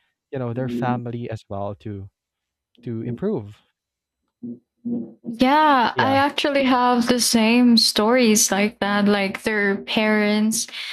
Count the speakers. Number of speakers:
two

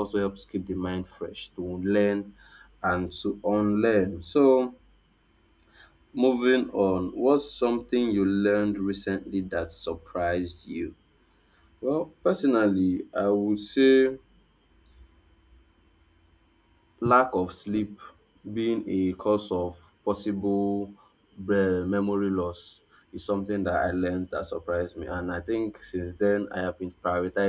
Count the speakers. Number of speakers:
one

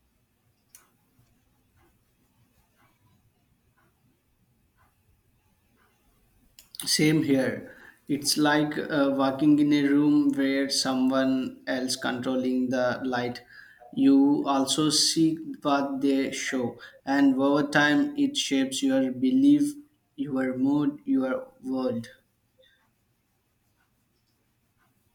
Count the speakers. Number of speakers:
one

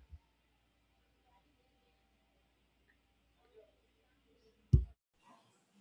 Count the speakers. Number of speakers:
zero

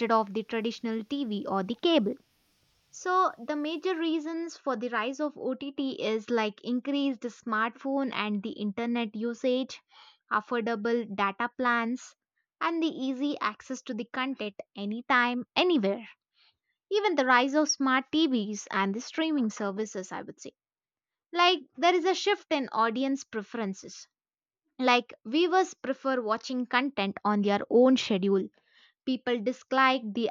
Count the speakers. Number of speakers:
one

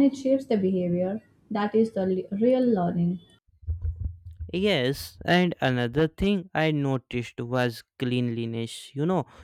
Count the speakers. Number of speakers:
two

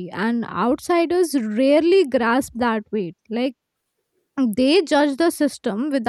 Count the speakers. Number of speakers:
one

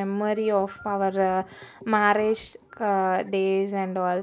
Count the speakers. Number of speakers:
one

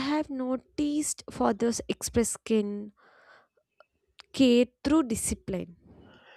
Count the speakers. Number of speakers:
one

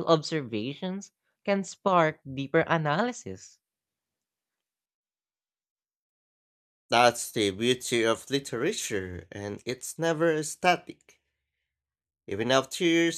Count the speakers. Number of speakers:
two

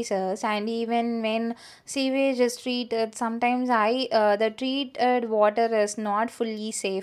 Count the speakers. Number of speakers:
one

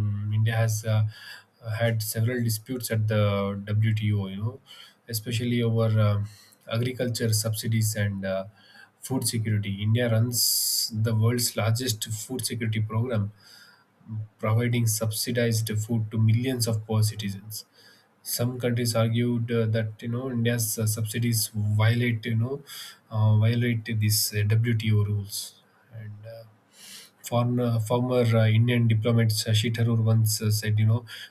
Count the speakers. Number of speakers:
one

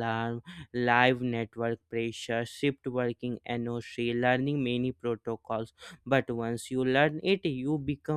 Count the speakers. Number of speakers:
one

